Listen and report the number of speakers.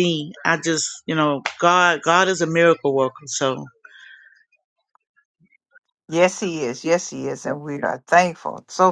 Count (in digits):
2